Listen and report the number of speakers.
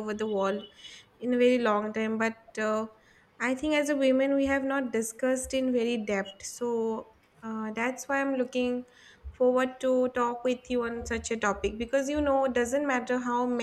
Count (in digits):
1